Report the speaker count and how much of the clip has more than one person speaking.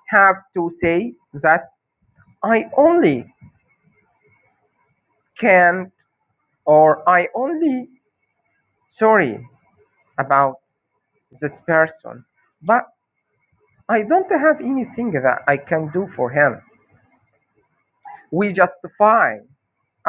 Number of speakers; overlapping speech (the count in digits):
1, no overlap